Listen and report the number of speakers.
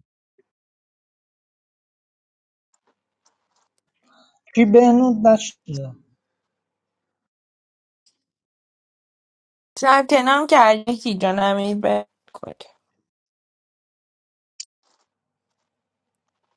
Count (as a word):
two